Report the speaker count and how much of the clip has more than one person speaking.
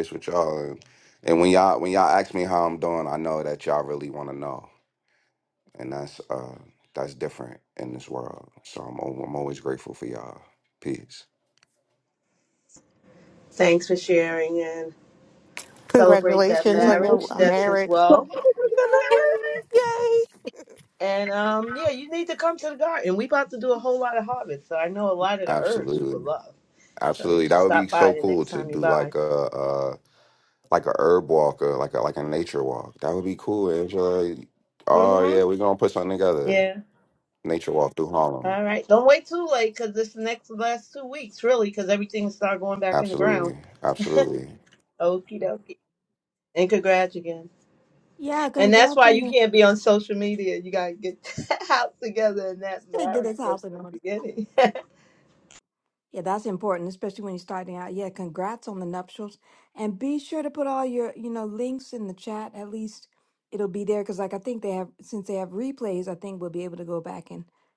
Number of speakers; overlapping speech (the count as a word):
five, about 12%